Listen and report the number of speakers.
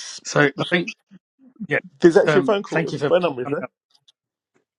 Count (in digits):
2